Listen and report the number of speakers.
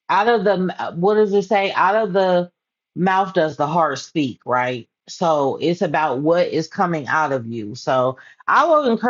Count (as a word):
one